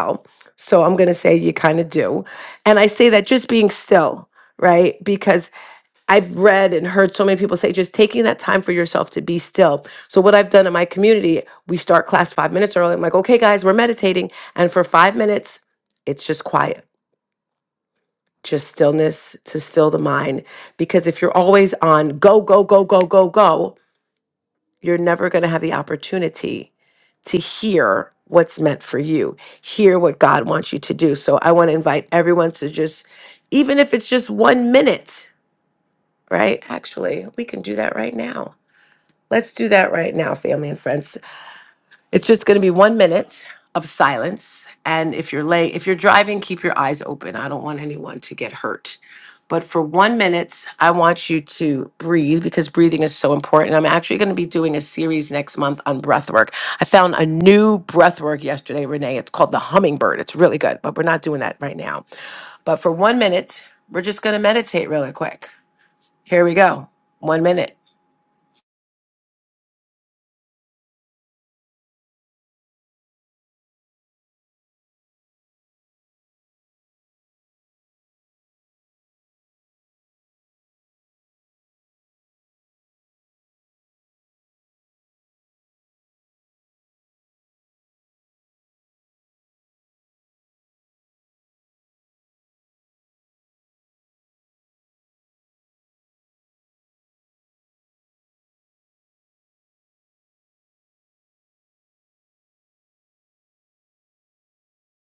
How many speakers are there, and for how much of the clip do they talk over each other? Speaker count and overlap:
1, no overlap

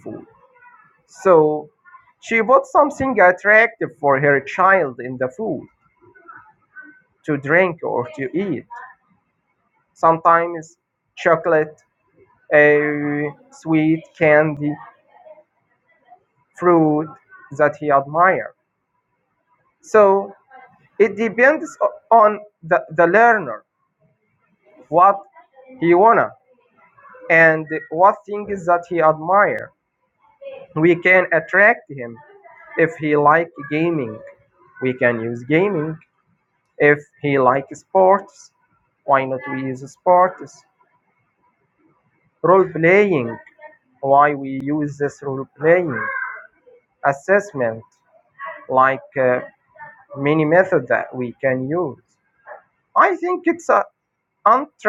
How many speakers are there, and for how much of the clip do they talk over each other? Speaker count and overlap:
1, no overlap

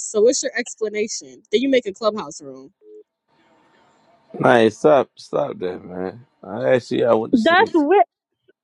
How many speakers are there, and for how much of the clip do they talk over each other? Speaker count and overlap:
2, about 5%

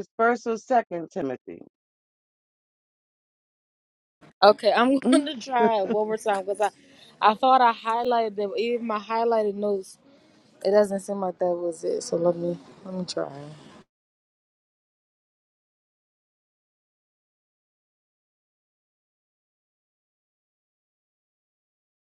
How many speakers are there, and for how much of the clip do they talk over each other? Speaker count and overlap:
2, about 1%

